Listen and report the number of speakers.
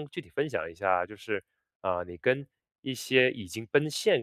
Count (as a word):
one